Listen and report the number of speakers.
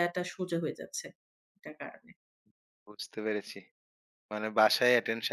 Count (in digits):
2